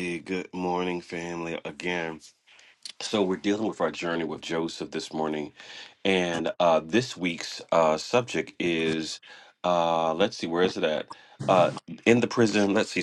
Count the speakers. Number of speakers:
one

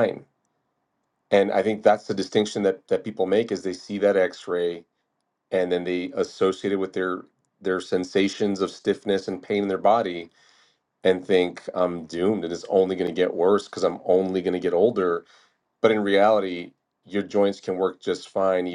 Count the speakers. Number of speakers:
one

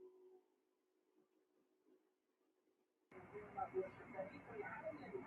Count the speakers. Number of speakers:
zero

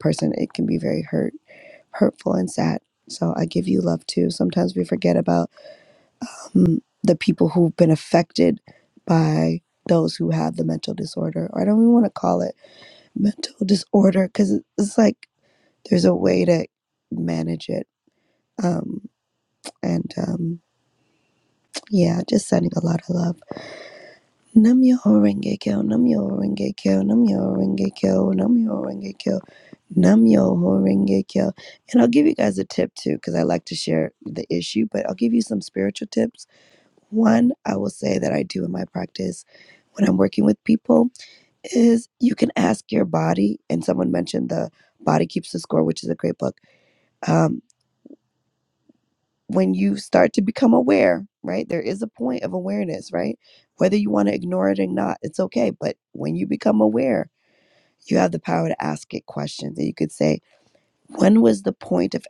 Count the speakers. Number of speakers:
one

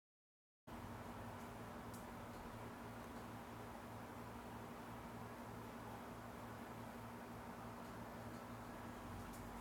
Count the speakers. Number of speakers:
zero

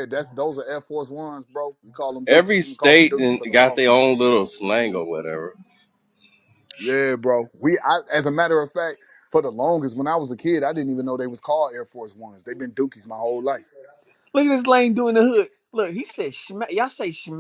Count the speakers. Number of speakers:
three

